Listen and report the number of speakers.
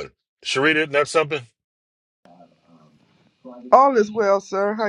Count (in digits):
2